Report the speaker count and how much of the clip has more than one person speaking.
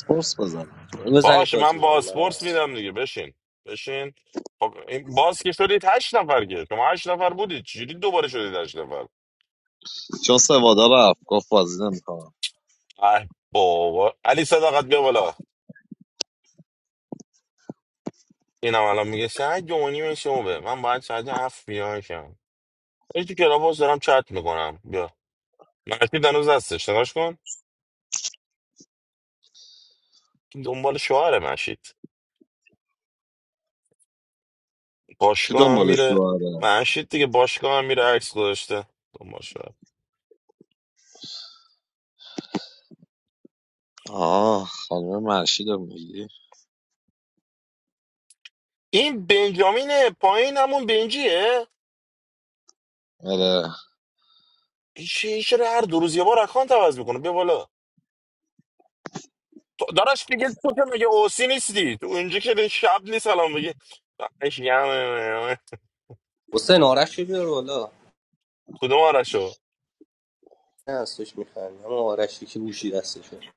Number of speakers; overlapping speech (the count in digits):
3, about 3%